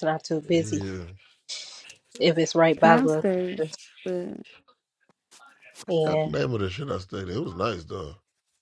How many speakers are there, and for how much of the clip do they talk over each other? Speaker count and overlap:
3, about 13%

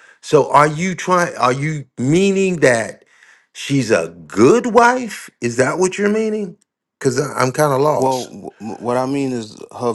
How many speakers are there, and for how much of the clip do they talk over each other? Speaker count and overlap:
2, about 2%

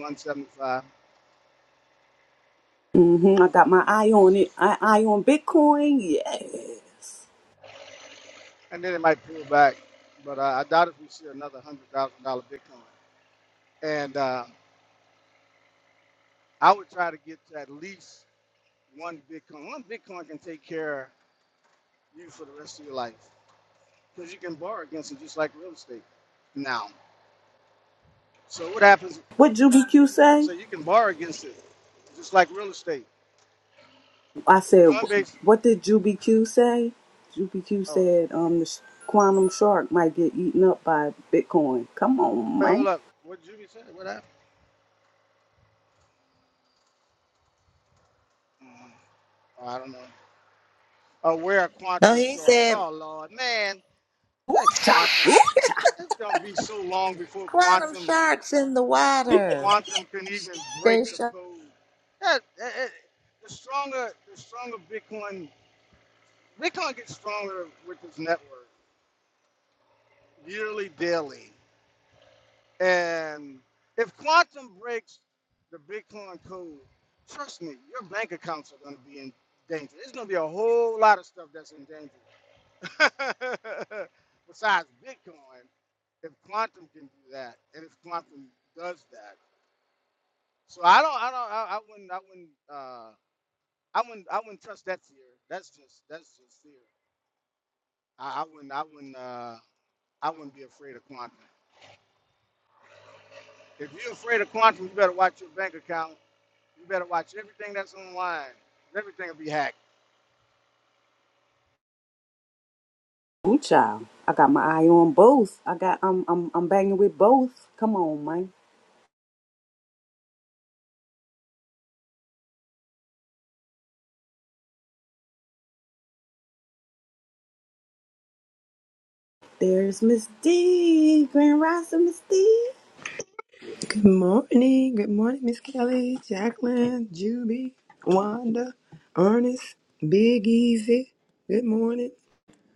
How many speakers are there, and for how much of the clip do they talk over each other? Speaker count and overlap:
4, about 3%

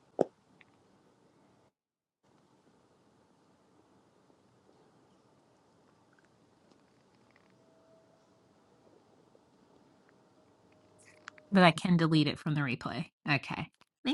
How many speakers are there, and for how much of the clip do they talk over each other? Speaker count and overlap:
1, no overlap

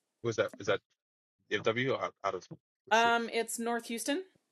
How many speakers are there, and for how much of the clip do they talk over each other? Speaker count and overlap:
2, about 1%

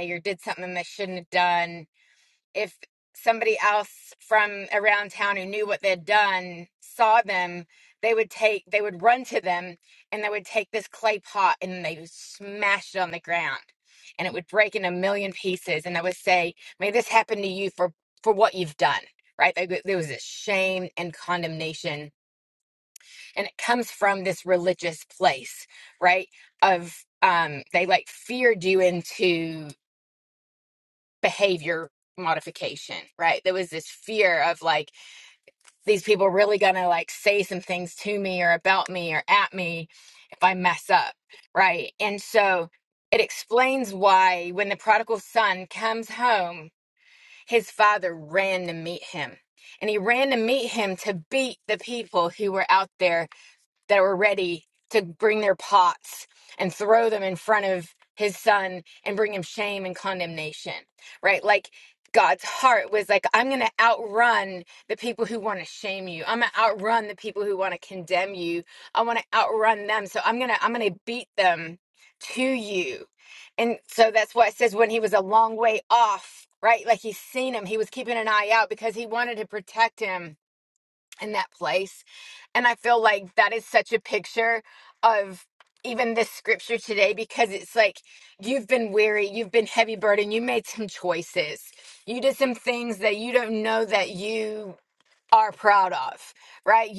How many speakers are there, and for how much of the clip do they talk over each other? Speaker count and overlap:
1, no overlap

